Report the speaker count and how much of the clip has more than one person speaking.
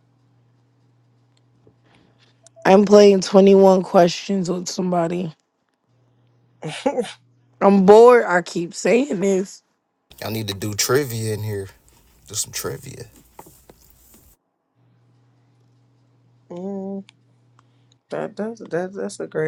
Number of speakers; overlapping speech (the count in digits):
3, no overlap